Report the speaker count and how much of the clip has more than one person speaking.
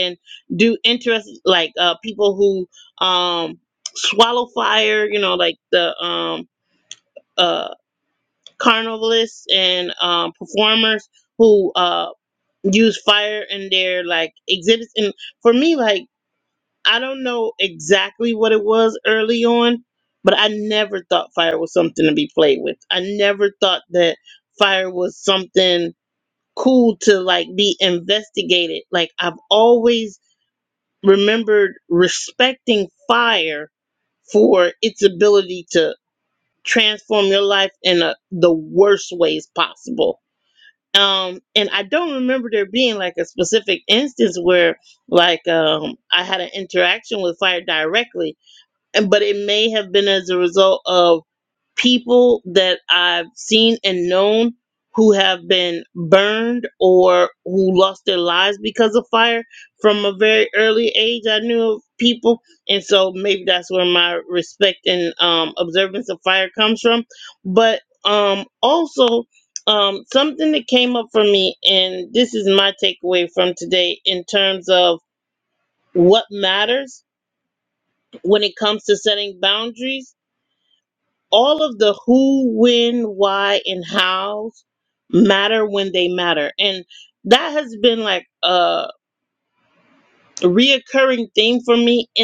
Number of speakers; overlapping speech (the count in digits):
1, no overlap